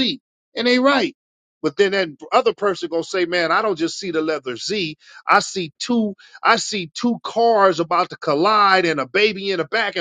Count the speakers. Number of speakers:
one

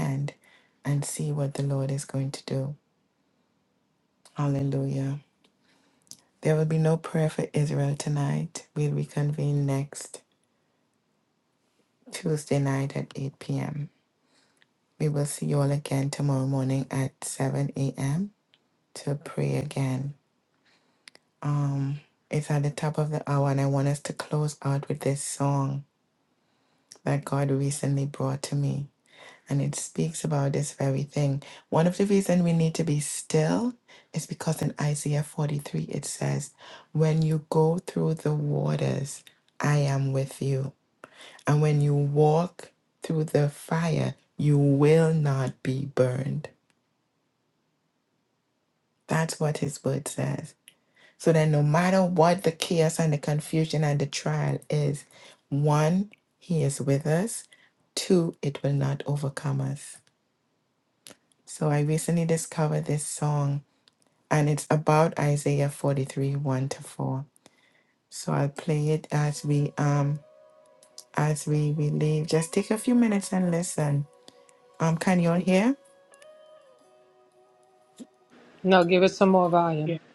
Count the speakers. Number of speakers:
two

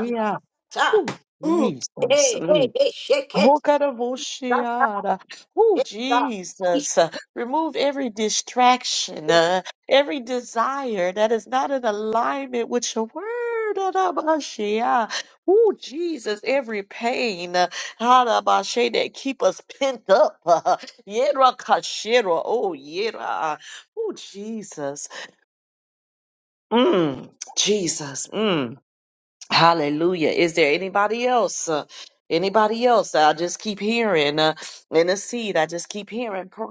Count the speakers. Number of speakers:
two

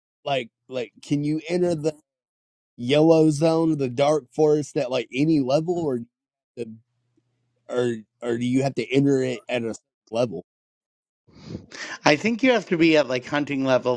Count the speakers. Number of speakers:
two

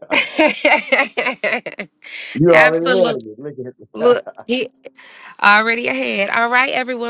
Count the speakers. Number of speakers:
two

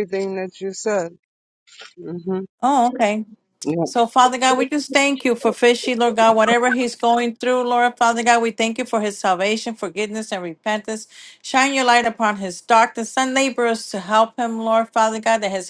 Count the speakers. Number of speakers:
two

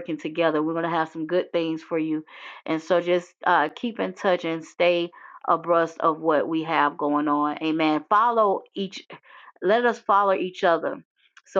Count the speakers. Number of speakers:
one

